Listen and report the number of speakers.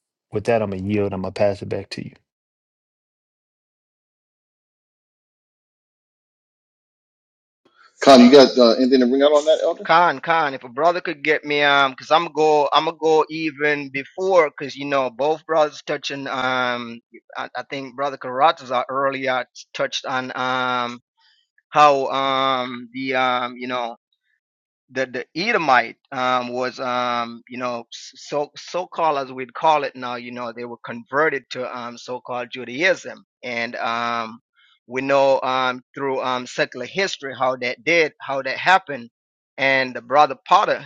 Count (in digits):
3